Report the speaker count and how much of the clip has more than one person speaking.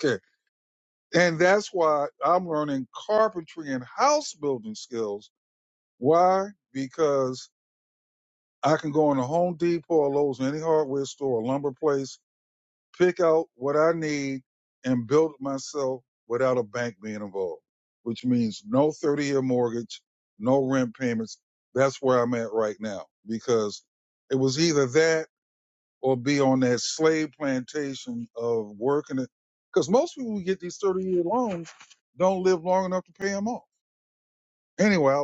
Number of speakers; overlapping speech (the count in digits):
1, no overlap